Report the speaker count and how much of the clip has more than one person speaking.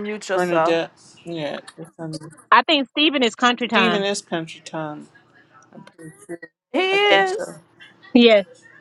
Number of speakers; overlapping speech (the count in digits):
3, about 13%